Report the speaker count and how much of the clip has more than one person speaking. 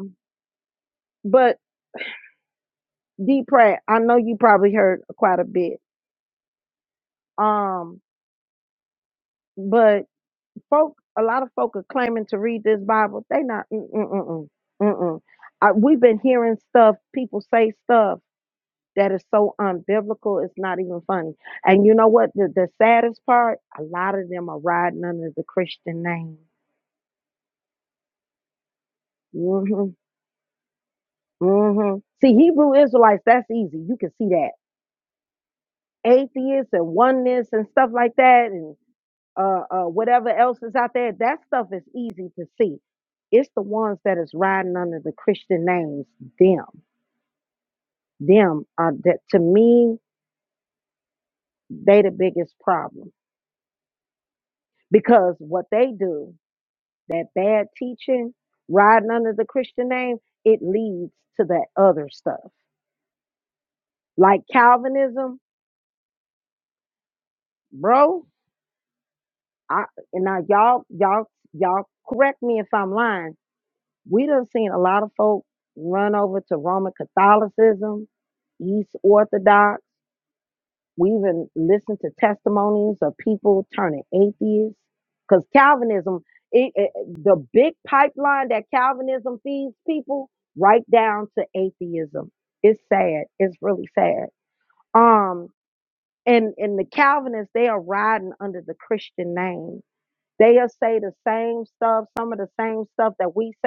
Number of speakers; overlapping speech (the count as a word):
one, no overlap